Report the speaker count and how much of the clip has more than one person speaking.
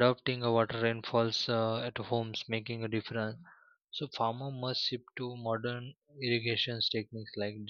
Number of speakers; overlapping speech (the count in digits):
1, no overlap